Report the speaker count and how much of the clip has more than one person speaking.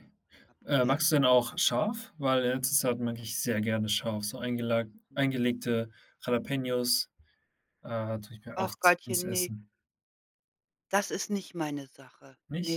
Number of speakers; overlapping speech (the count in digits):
2, about 12%